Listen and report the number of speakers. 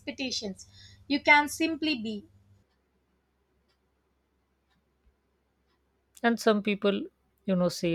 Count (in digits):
2